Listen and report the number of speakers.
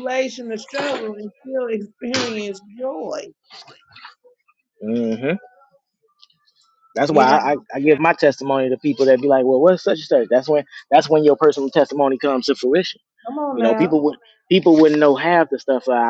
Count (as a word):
two